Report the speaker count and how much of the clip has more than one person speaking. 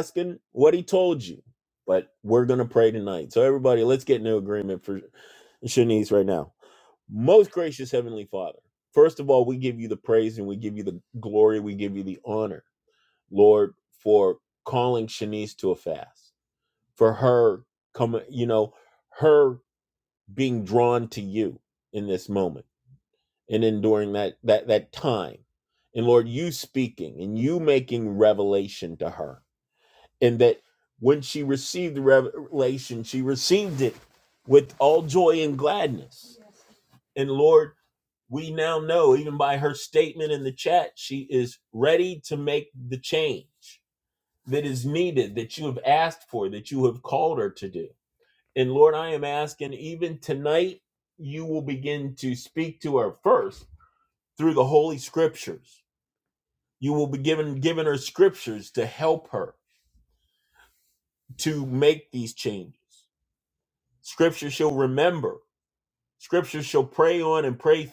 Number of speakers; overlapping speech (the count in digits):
1, no overlap